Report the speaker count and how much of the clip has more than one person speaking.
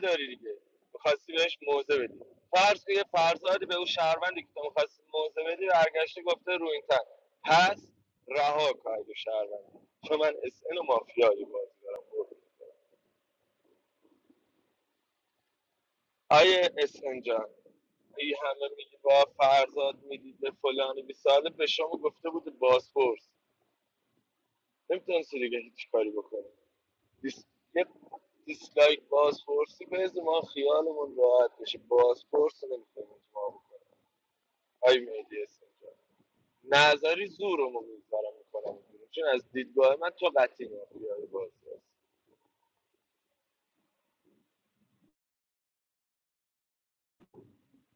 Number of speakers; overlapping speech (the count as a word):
one, no overlap